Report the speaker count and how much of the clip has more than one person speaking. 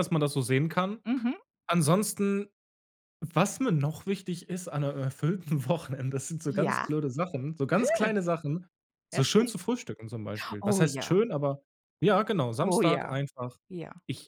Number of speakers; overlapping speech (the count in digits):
2, about 14%